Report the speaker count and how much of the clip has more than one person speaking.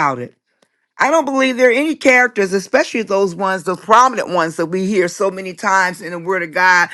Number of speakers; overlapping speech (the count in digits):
1, no overlap